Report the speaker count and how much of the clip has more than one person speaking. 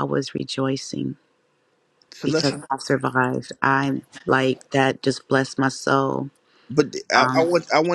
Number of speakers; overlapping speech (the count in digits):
2, about 8%